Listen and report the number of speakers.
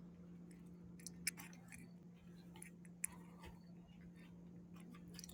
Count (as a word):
zero